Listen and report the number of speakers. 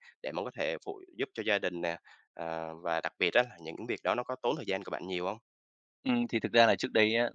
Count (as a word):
two